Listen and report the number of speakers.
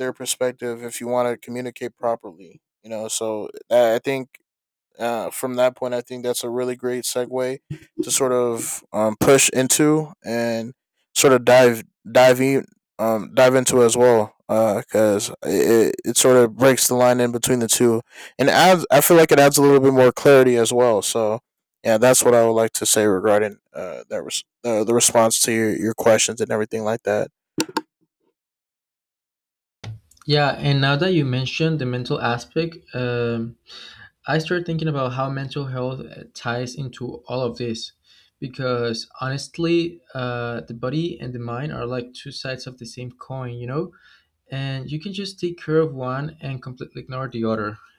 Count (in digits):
2